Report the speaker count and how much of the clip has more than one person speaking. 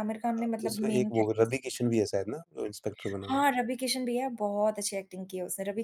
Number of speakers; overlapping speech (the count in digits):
2, about 19%